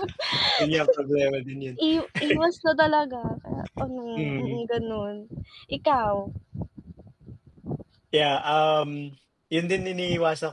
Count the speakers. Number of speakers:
two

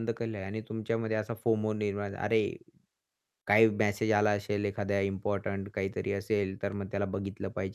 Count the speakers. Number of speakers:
one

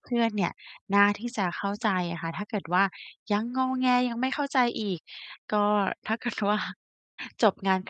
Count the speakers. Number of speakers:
one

